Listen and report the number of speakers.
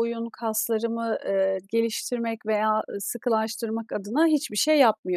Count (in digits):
1